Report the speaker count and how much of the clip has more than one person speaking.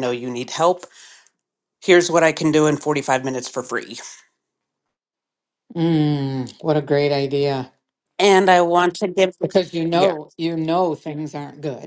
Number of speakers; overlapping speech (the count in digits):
2, about 2%